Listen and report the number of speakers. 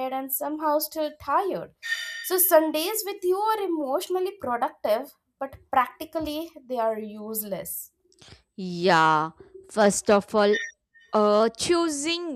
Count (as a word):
two